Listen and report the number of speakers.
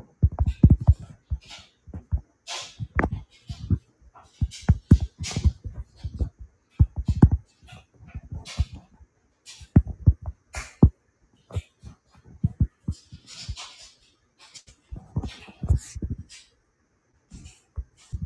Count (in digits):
0